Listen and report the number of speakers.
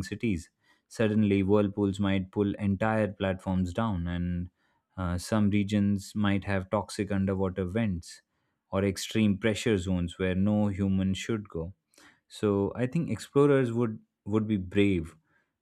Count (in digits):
1